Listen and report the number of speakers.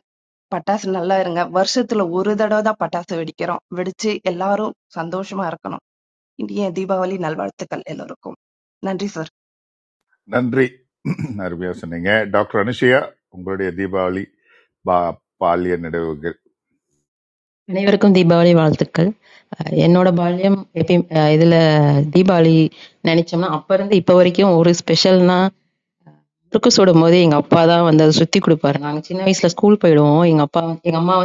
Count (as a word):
three